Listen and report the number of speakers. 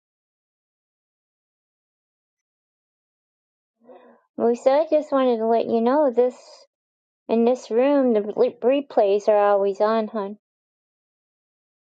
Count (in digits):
1